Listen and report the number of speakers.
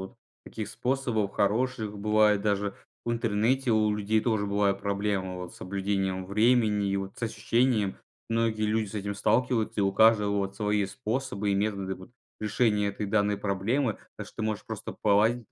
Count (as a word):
one